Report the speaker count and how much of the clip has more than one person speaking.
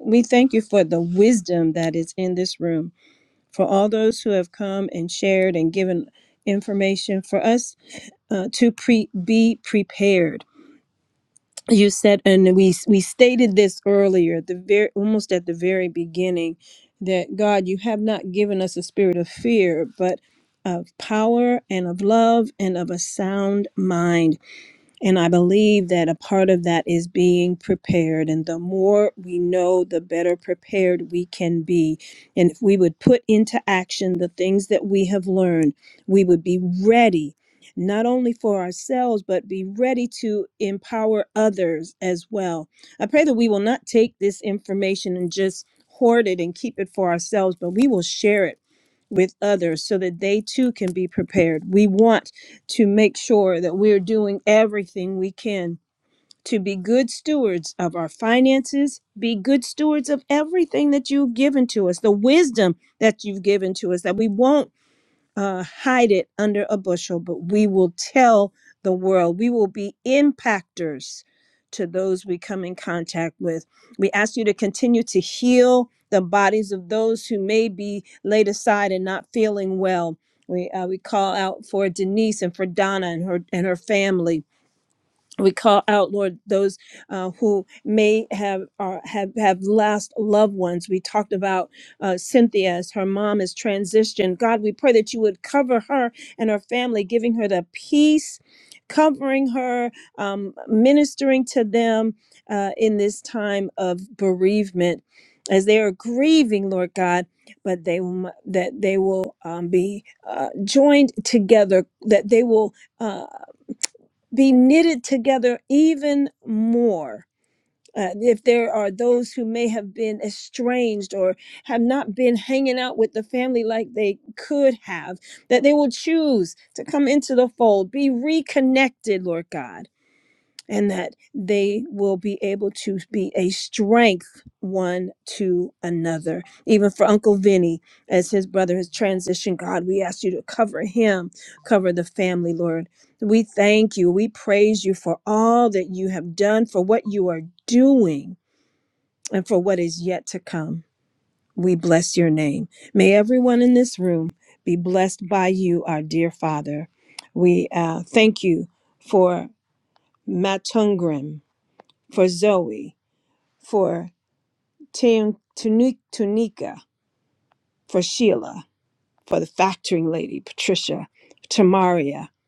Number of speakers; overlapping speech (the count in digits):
1, no overlap